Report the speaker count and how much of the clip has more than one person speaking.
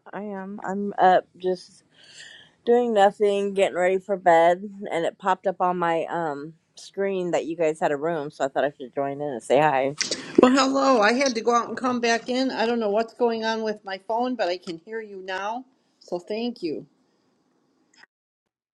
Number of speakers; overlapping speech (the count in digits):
2, no overlap